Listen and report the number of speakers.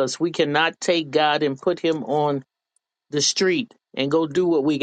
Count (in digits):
1